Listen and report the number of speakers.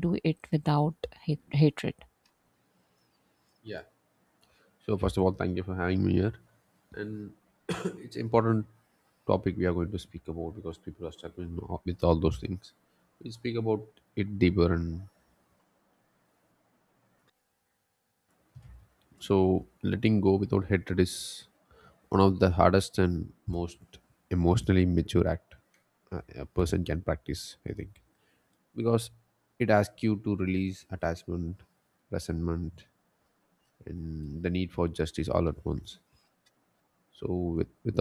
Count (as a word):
two